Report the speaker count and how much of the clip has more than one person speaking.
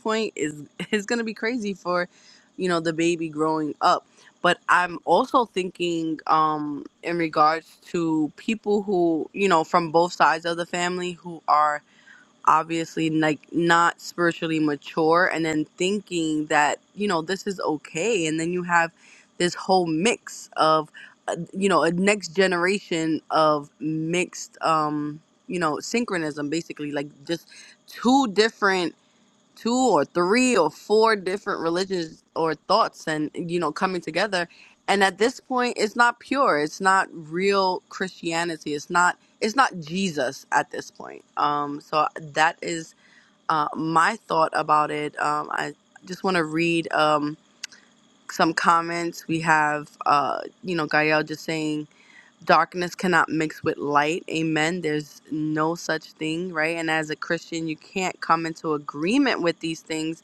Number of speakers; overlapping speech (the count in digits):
1, no overlap